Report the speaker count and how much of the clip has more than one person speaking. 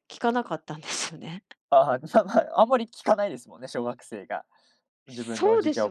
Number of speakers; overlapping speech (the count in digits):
2, about 14%